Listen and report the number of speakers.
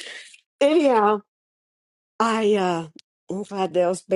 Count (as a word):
one